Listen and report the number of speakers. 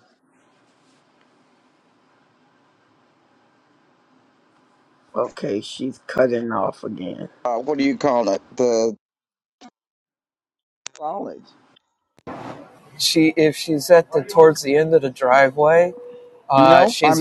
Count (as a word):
three